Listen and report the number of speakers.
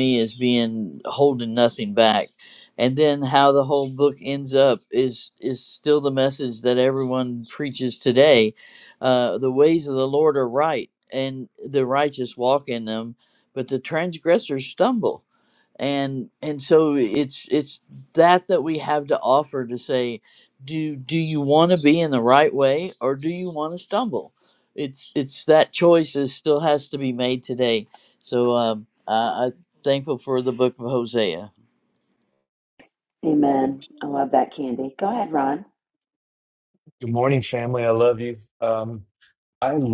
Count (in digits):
3